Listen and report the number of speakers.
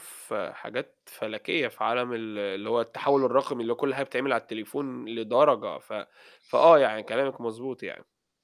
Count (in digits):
1